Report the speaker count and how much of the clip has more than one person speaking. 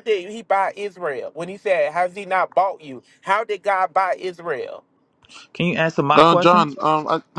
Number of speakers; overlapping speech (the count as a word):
three, about 7%